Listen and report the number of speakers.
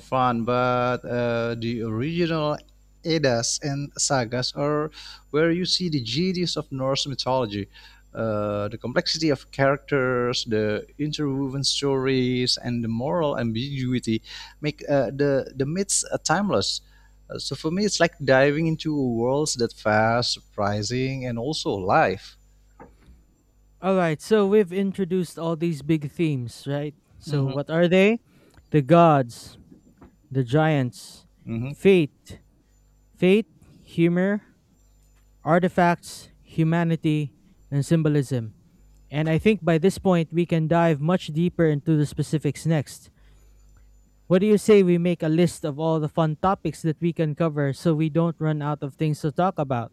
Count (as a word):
two